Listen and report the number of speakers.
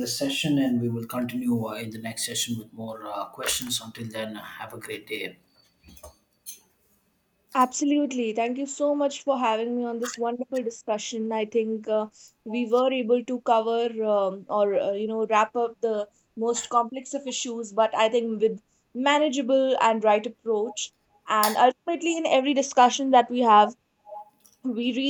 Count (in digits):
2